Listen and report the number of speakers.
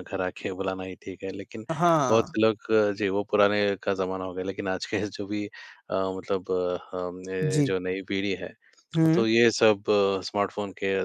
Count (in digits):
2